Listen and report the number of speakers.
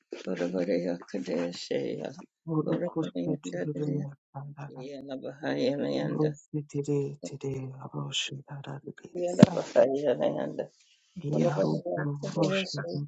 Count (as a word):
two